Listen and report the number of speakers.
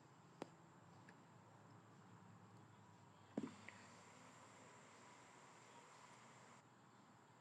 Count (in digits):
0